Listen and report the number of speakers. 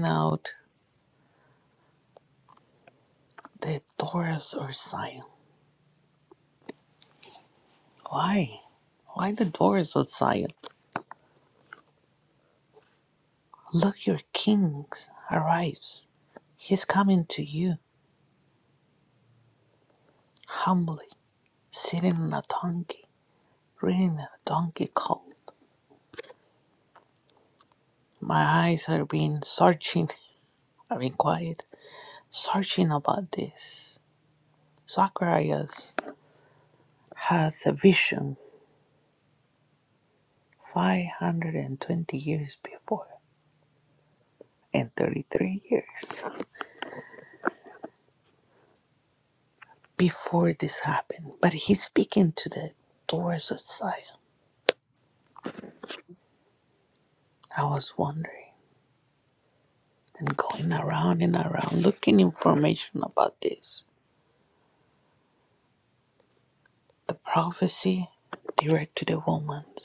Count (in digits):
1